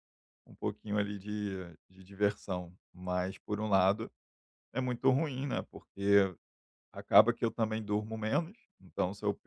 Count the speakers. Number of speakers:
1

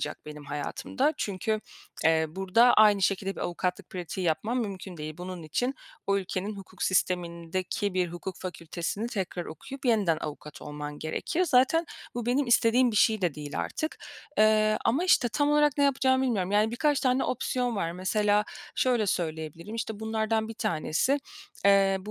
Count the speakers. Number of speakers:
1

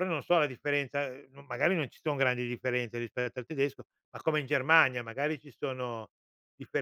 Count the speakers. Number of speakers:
1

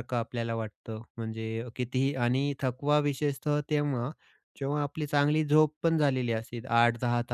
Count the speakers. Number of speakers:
1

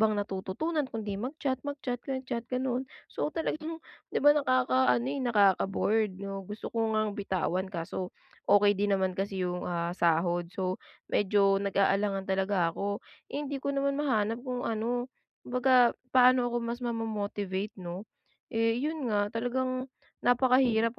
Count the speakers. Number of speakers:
1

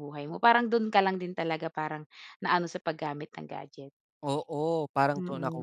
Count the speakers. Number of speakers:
2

